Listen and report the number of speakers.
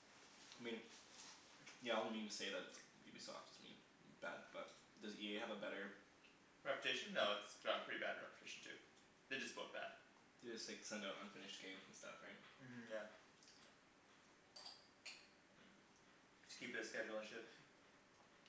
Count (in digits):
2